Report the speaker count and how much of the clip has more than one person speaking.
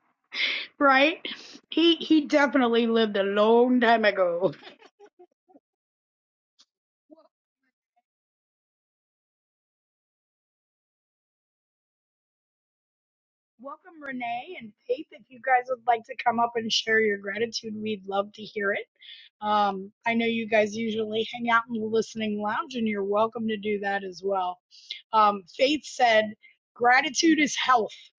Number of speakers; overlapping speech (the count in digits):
1, no overlap